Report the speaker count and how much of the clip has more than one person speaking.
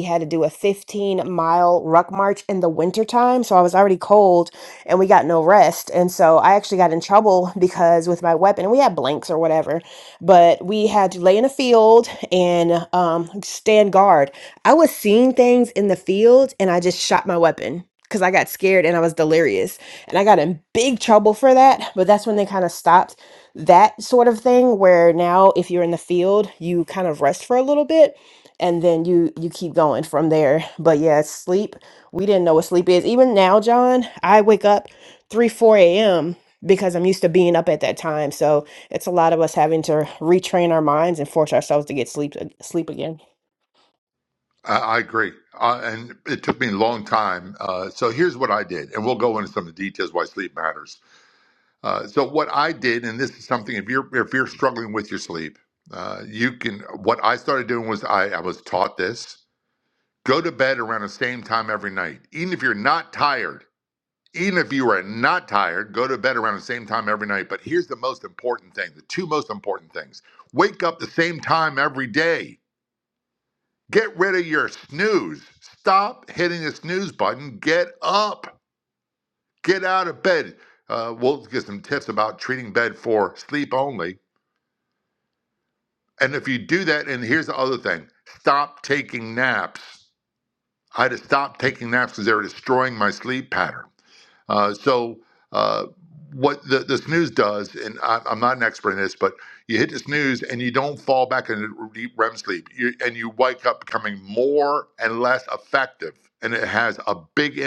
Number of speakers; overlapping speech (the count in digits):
2, no overlap